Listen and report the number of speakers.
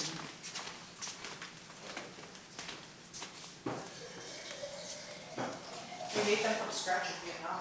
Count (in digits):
1